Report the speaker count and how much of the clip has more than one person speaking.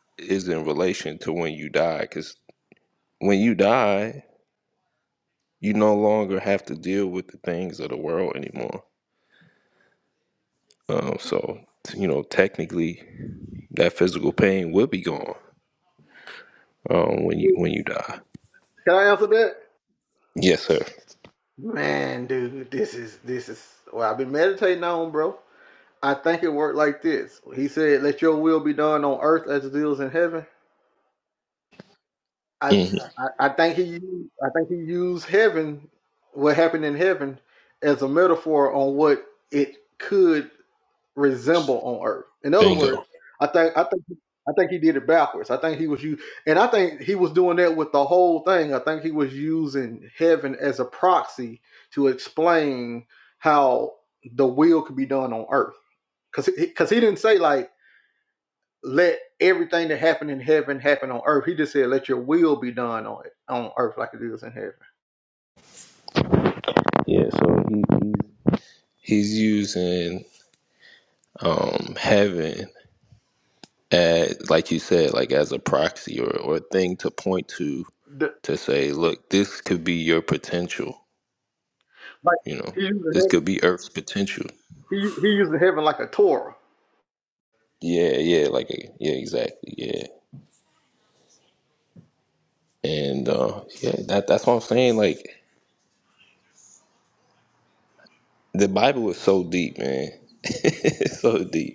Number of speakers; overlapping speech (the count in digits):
2, about 1%